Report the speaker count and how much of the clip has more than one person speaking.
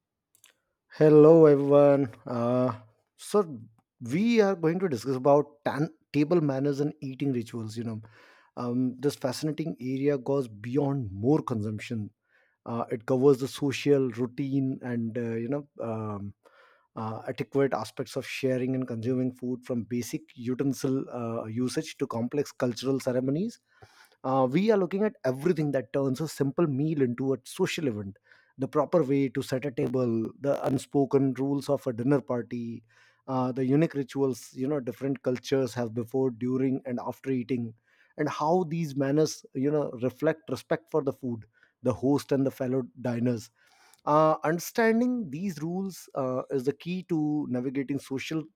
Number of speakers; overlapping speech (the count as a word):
one, no overlap